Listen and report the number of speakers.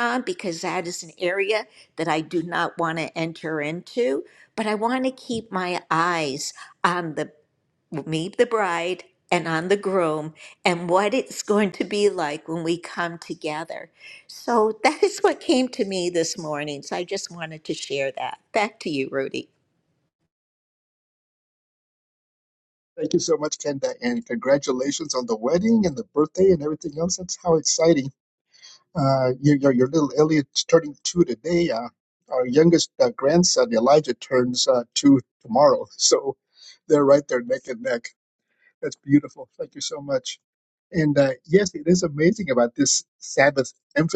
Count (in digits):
2